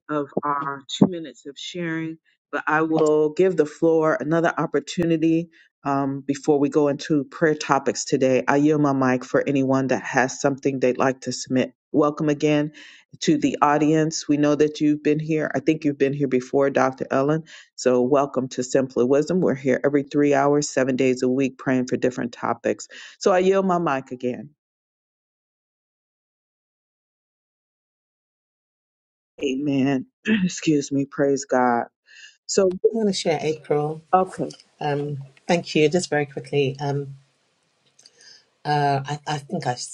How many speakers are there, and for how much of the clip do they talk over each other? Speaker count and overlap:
two, no overlap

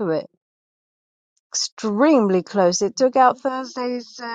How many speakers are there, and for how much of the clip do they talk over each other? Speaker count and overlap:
one, no overlap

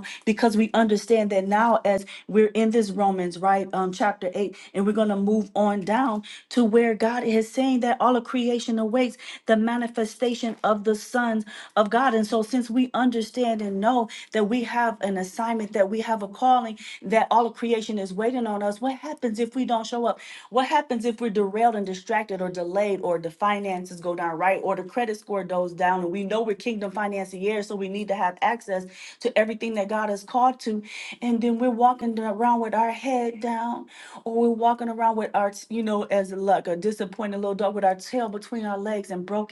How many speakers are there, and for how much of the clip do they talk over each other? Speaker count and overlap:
one, no overlap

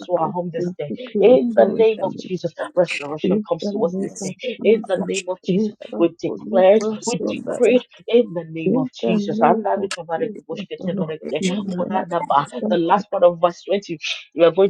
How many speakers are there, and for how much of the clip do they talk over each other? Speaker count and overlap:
two, about 49%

